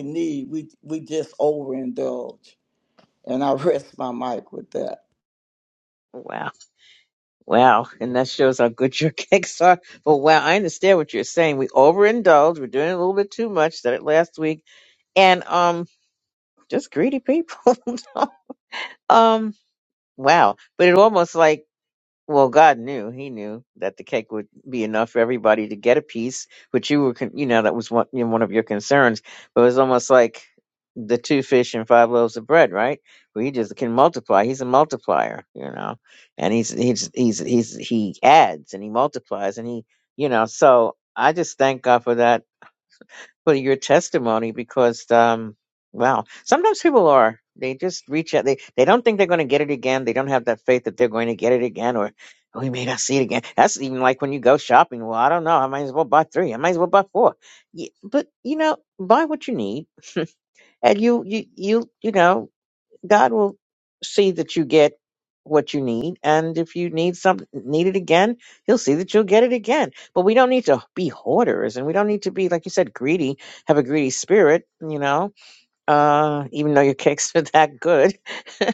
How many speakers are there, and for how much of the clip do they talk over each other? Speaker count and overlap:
two, no overlap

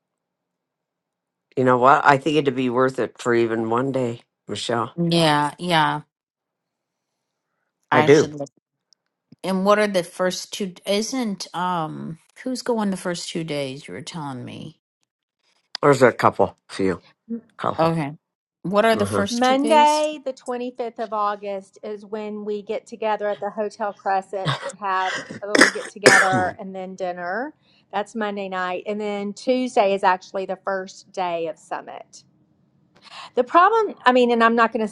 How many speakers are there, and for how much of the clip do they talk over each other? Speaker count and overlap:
three, about 4%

